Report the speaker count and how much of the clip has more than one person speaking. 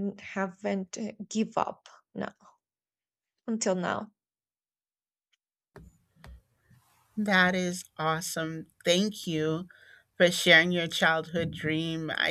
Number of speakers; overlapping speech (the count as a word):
two, no overlap